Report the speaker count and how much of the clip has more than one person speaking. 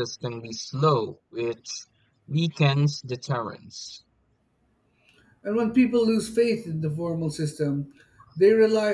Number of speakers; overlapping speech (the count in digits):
2, no overlap